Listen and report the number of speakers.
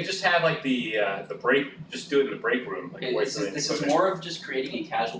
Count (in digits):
2